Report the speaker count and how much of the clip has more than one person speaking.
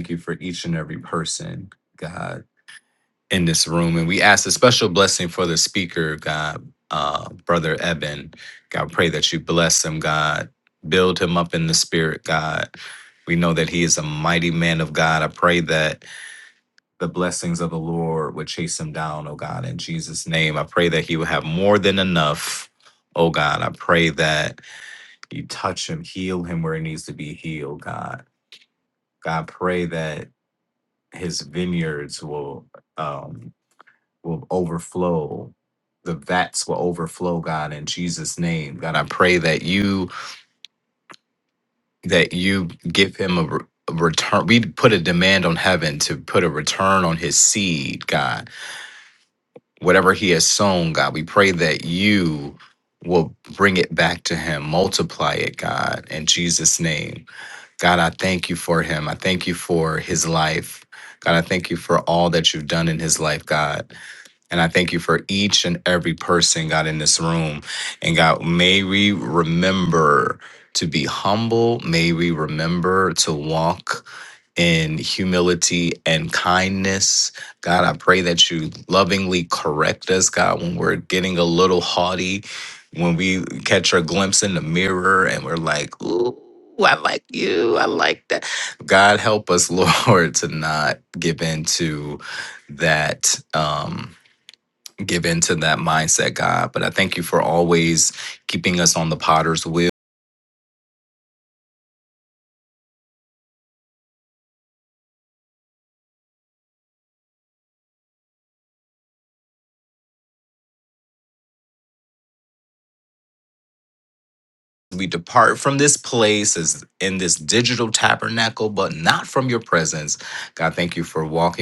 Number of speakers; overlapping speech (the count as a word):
one, no overlap